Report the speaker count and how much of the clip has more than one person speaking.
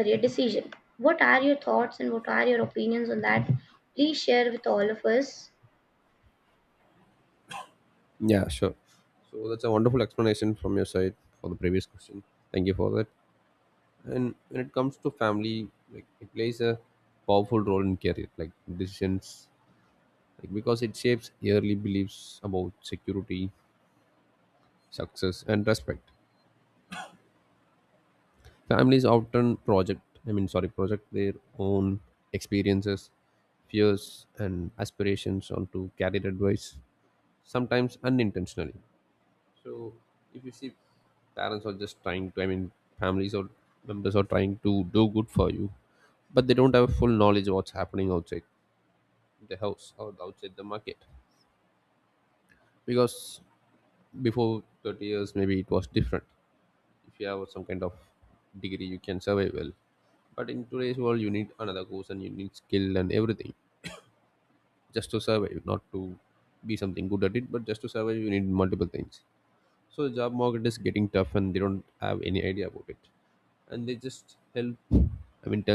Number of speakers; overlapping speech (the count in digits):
2, no overlap